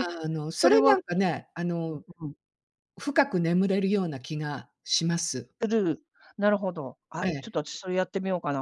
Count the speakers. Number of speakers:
2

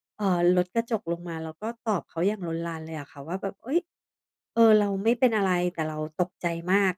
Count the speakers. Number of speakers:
1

